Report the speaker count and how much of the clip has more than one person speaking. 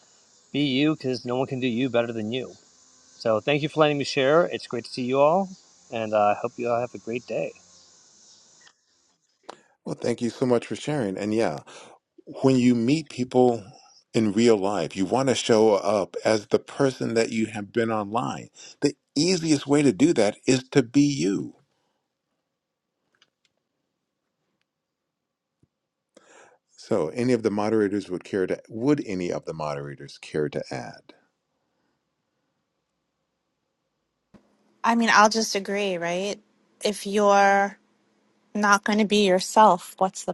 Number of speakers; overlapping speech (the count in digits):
3, no overlap